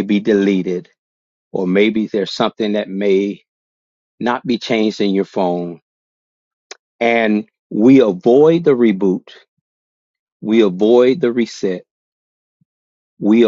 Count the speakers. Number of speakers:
one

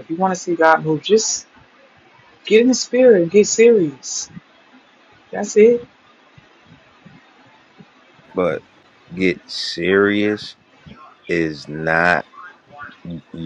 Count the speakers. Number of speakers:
two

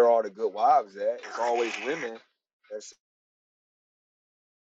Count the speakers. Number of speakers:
one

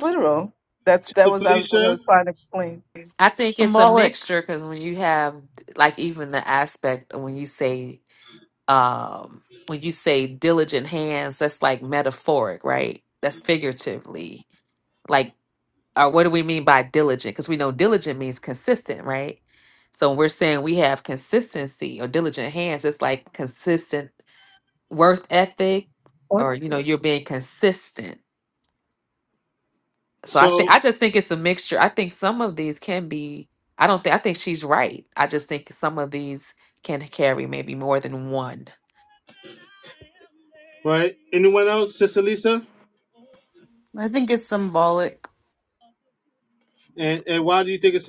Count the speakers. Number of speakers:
four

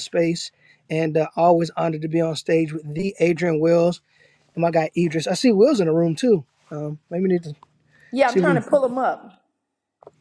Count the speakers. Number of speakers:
two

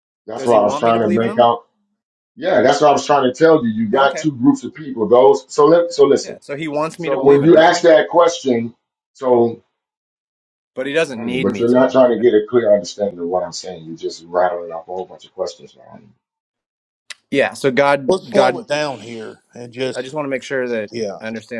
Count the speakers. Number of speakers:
three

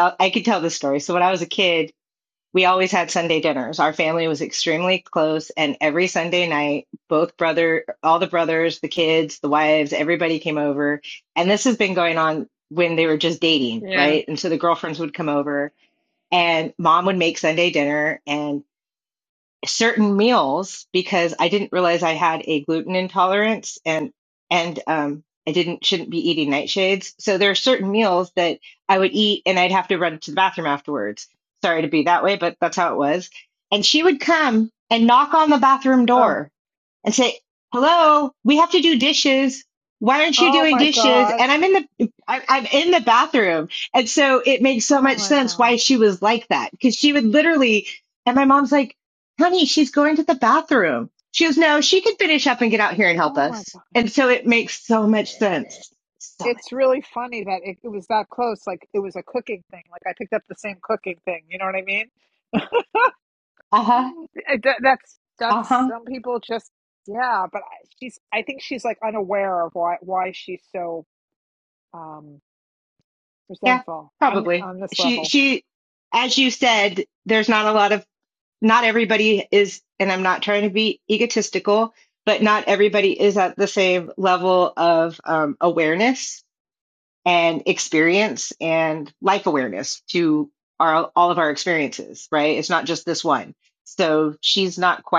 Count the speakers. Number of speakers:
two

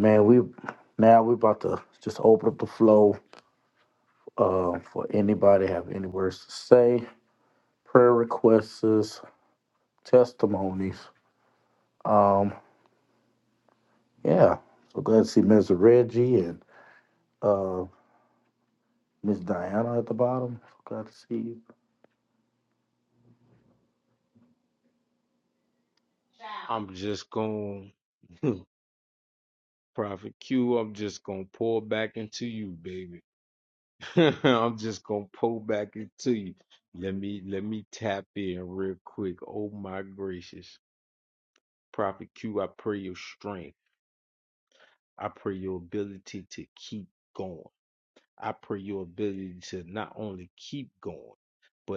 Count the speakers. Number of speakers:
two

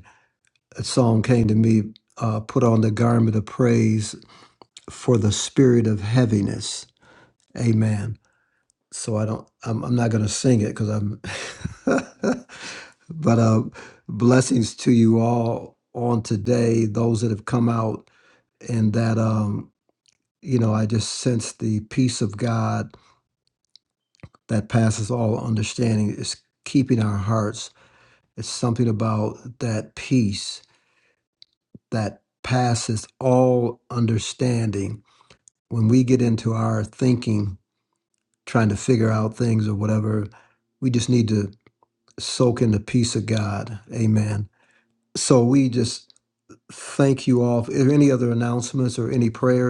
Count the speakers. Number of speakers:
one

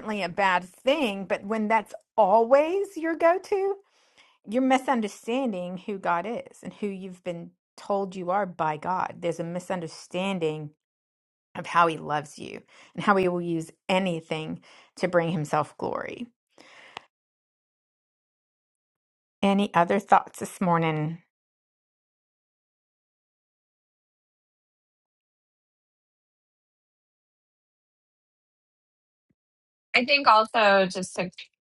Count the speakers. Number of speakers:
two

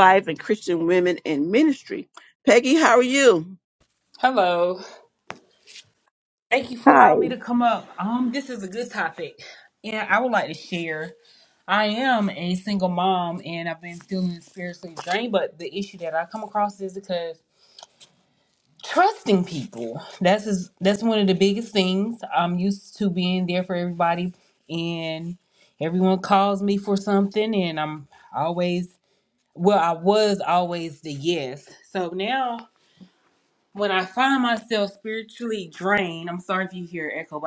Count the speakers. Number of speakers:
two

